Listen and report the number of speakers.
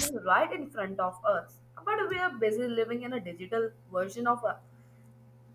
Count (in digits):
1